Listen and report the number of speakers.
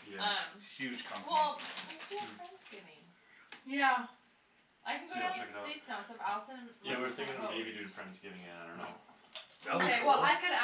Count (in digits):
4